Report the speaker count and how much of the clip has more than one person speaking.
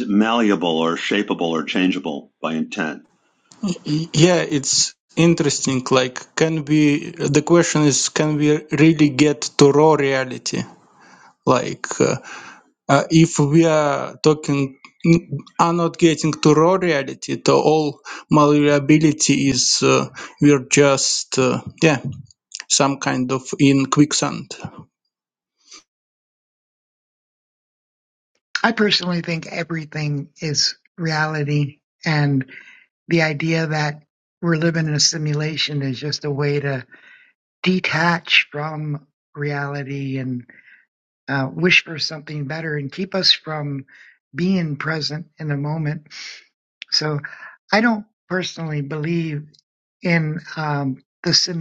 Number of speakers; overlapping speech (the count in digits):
3, no overlap